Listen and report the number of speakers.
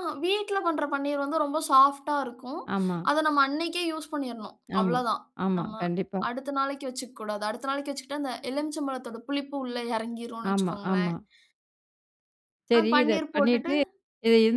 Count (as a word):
two